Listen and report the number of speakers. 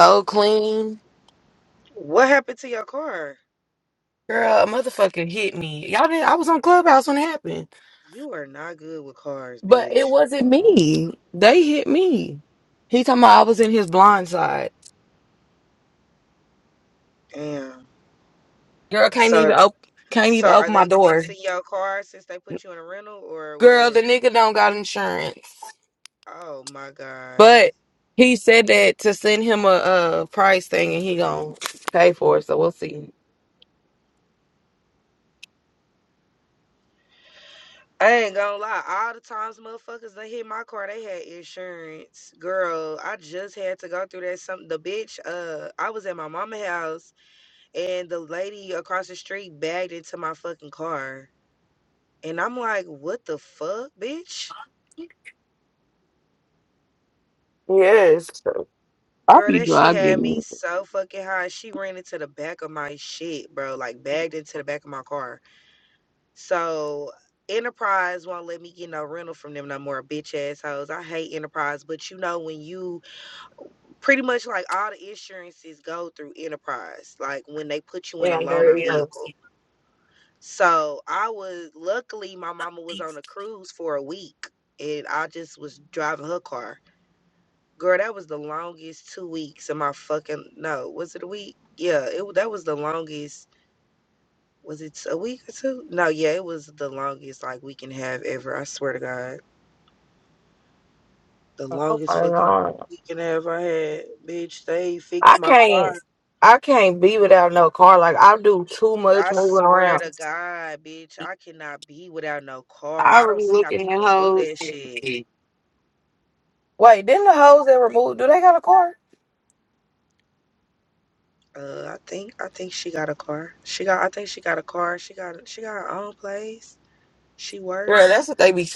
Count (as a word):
two